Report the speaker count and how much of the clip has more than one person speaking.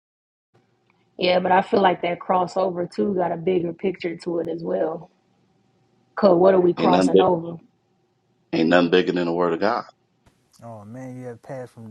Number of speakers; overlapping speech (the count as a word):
three, about 4%